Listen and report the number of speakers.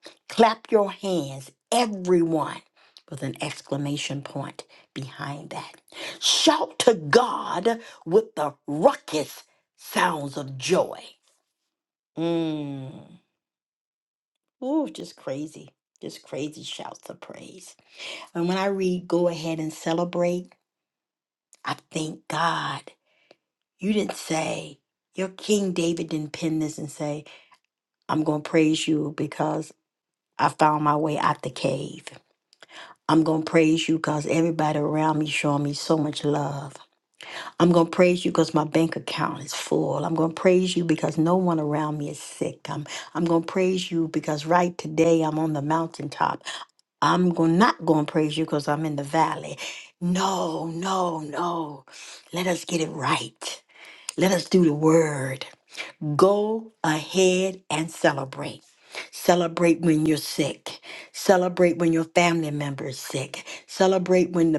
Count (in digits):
1